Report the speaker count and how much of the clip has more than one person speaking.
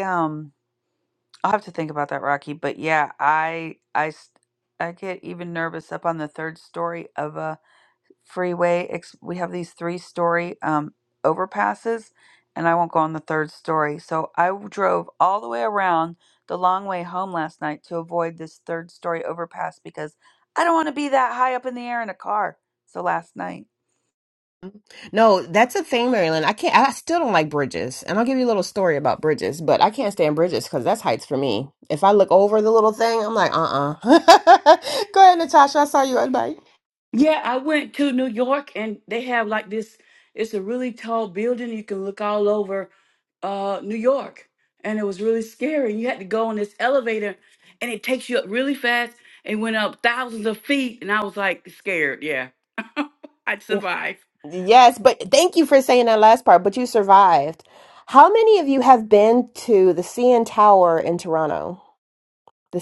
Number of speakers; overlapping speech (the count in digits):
3, no overlap